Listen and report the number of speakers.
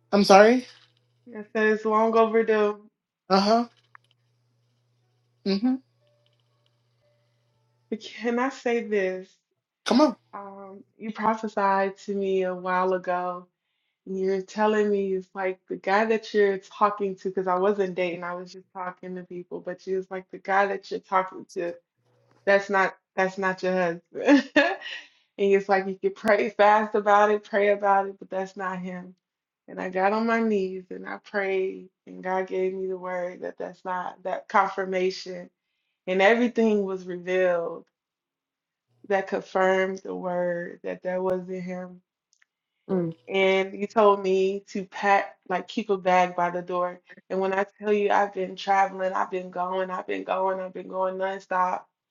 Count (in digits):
2